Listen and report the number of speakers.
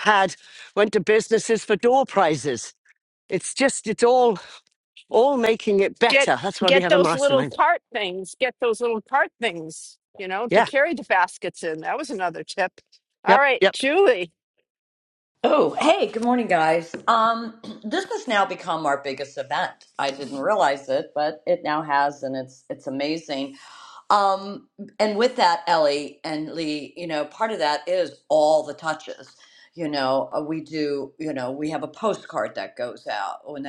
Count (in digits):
3